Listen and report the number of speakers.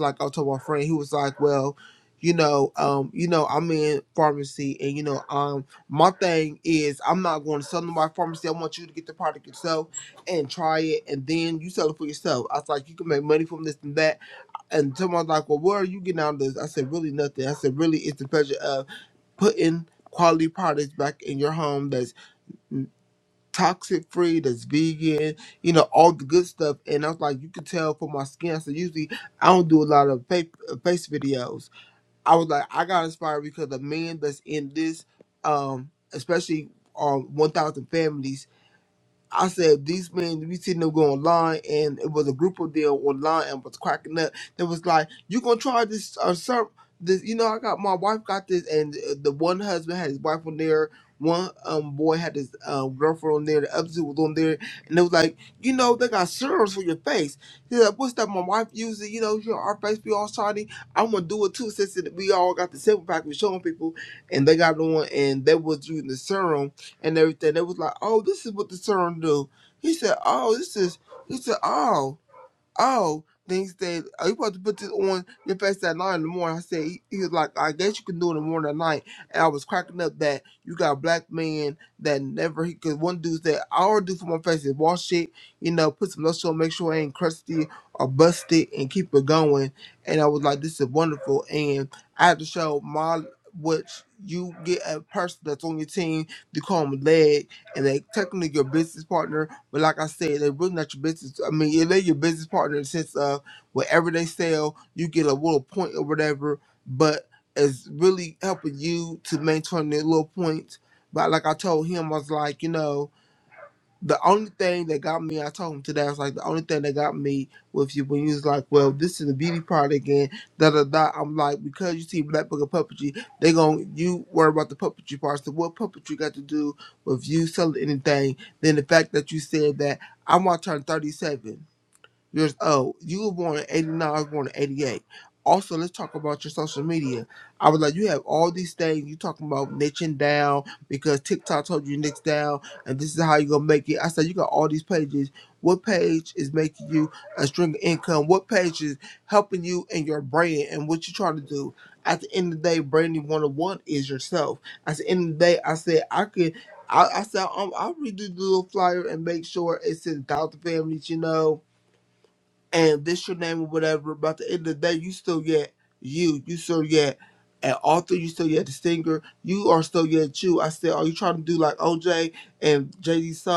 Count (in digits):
1